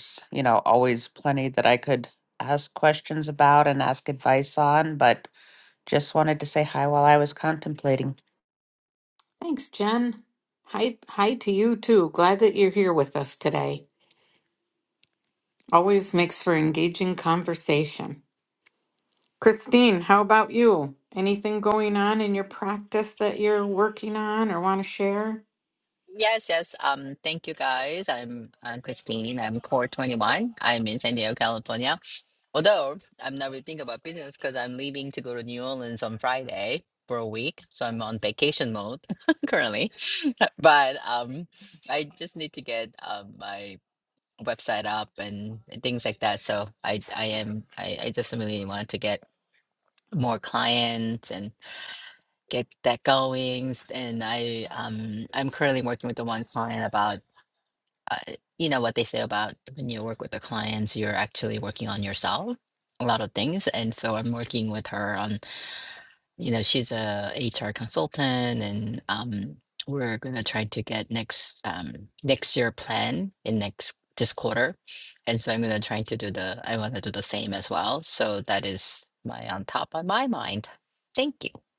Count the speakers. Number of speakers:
3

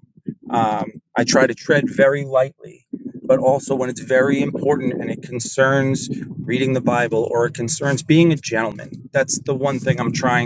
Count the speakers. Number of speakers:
1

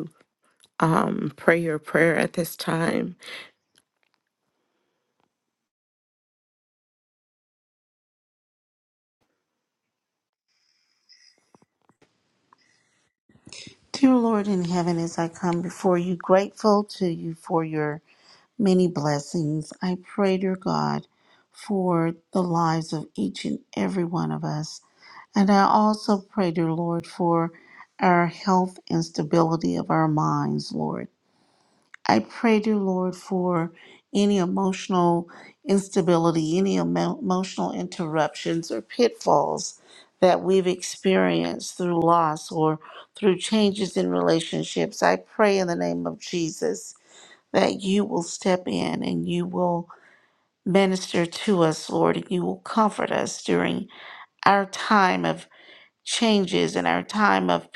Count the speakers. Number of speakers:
2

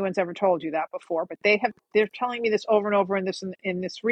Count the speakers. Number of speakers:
1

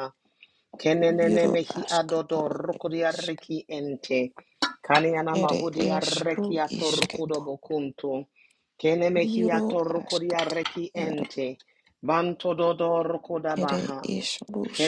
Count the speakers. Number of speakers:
2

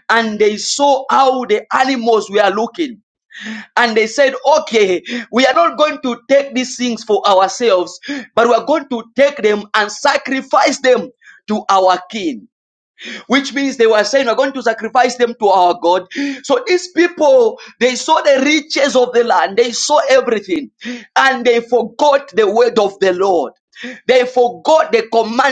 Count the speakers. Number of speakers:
1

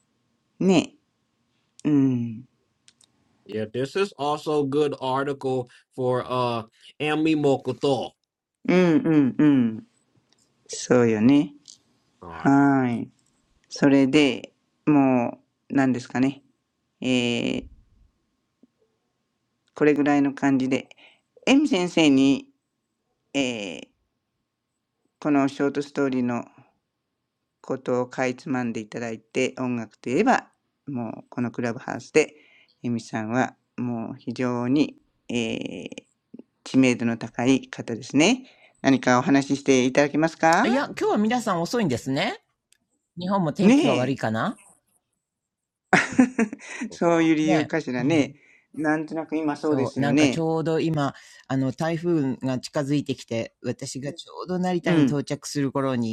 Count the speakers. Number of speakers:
3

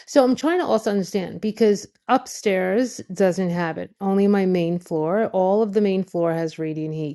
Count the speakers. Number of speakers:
1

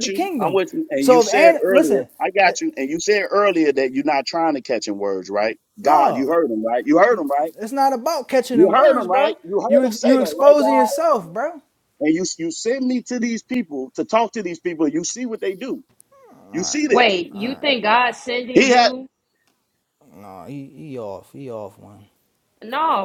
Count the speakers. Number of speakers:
3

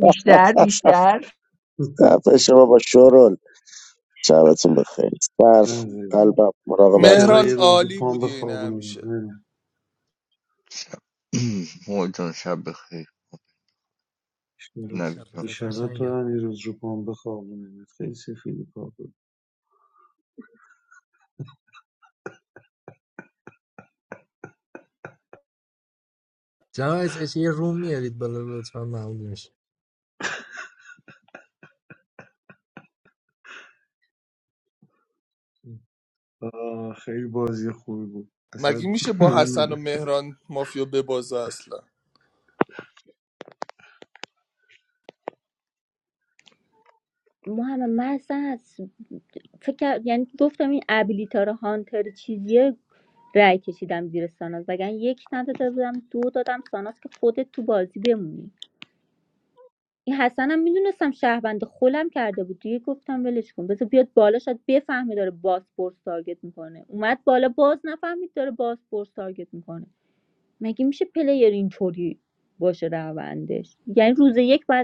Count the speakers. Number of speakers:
7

